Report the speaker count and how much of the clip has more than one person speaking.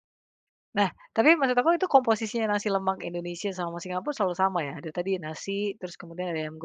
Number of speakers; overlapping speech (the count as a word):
one, no overlap